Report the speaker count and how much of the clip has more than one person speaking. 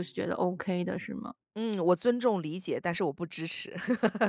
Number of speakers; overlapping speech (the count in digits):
2, no overlap